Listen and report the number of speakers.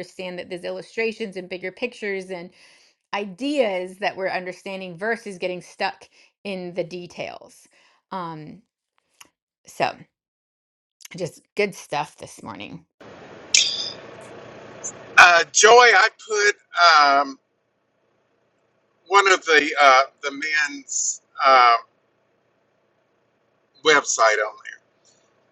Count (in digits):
2